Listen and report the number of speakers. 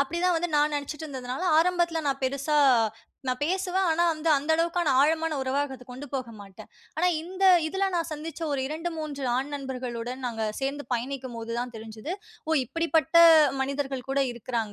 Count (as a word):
one